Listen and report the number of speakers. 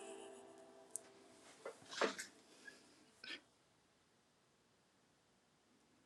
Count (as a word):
zero